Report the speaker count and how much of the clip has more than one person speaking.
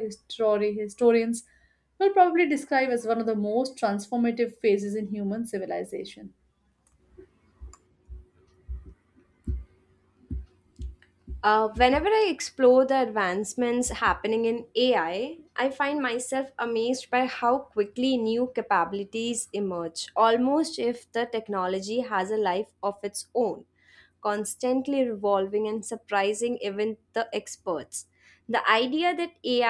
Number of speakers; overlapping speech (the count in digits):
2, no overlap